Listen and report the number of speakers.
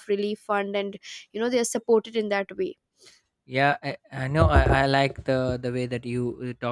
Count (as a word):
two